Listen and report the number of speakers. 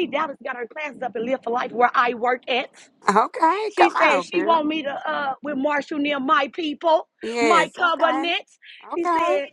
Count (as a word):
two